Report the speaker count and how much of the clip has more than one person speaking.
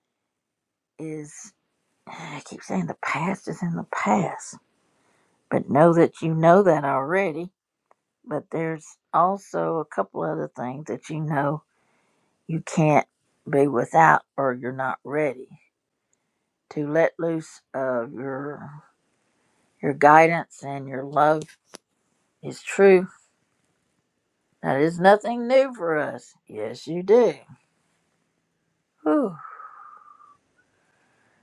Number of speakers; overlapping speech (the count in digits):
1, no overlap